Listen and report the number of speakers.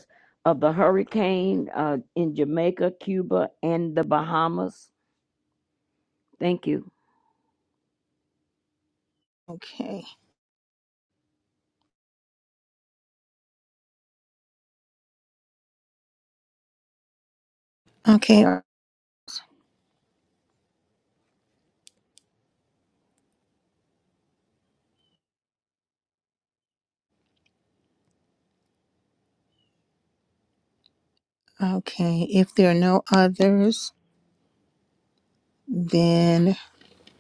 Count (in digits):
2